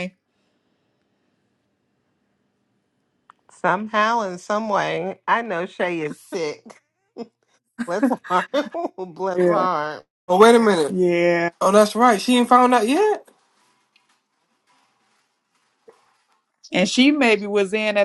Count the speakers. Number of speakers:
3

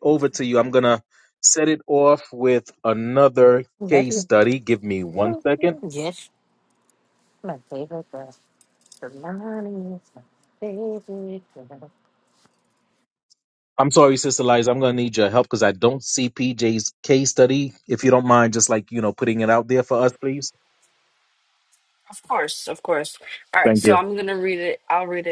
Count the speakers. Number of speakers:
3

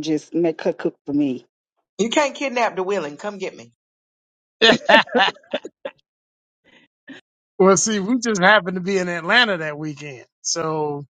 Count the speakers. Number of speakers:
3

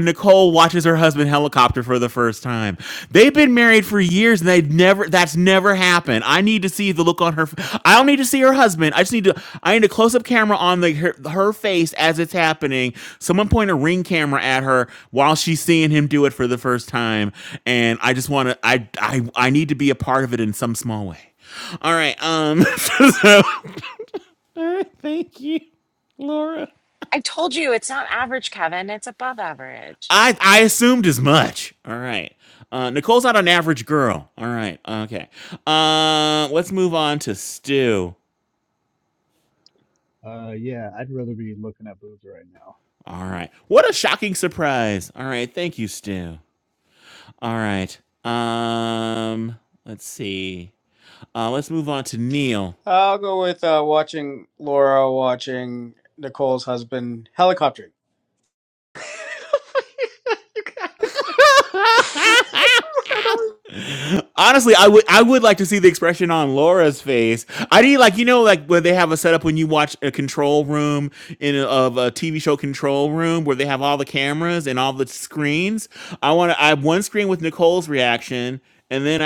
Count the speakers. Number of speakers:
5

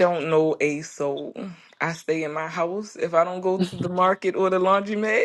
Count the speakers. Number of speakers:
1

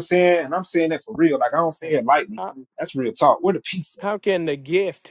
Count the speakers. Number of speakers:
2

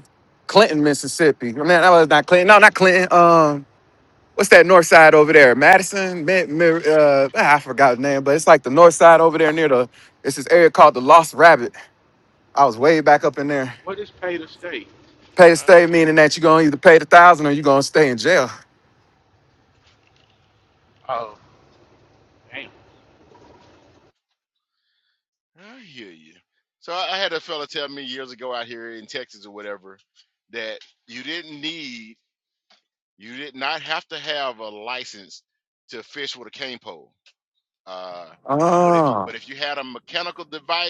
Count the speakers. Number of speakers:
3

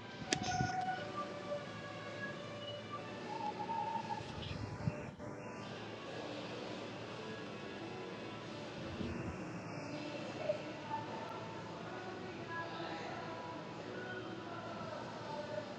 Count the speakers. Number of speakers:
0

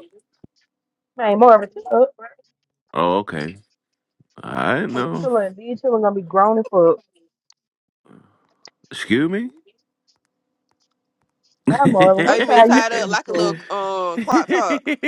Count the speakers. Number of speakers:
3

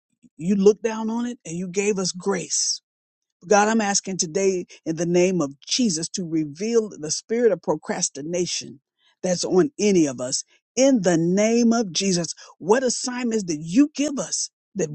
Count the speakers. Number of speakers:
1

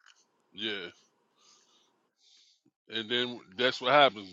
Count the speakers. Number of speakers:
1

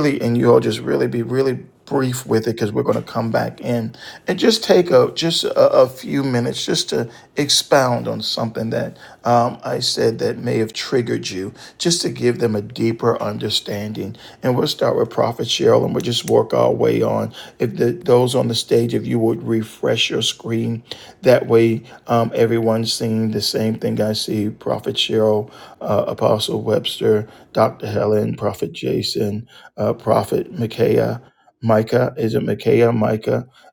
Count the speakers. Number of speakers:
1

